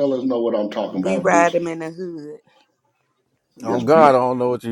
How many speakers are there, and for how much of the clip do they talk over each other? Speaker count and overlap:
3, about 24%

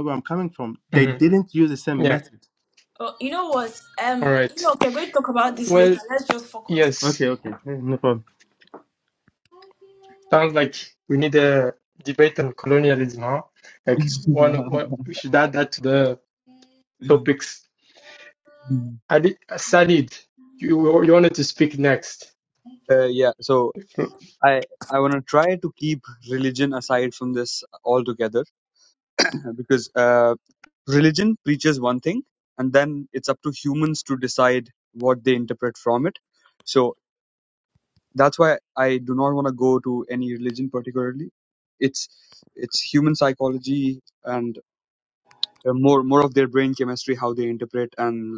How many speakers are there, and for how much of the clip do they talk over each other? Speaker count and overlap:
4, about 3%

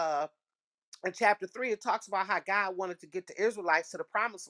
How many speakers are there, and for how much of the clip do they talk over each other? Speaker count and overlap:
1, no overlap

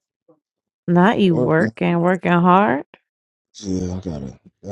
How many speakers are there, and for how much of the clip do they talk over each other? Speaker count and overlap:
2, about 9%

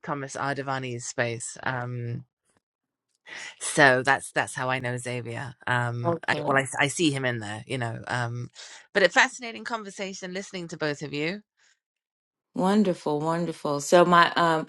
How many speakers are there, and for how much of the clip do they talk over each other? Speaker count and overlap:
2, about 3%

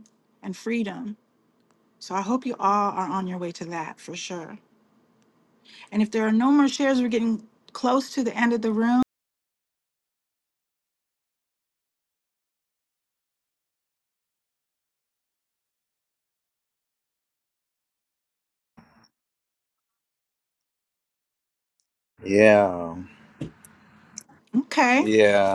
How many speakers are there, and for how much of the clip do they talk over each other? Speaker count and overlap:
2, about 1%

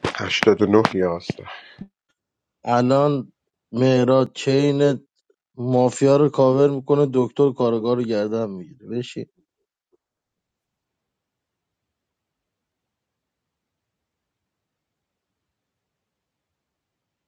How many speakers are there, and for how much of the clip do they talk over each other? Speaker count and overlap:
2, no overlap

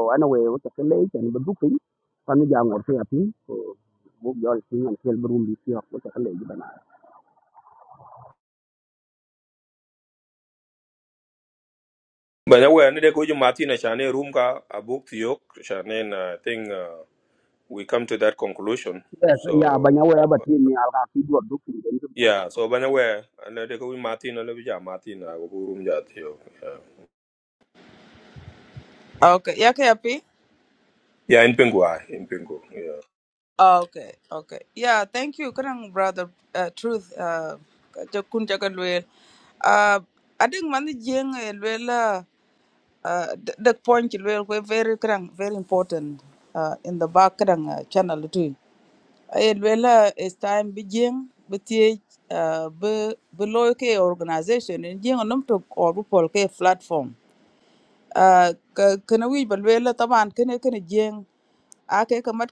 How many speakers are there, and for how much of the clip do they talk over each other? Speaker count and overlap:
3, about 1%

